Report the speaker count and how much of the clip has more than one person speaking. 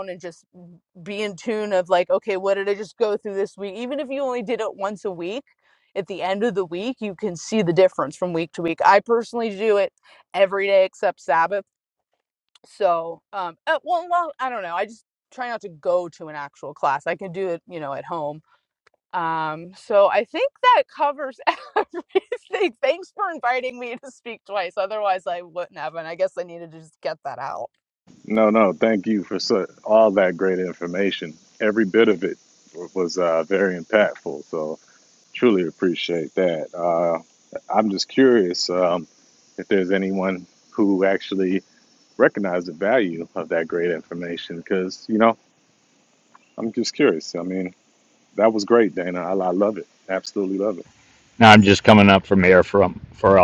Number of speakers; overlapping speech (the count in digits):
3, no overlap